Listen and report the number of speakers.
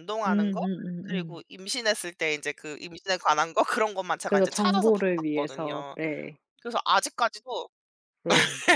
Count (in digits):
2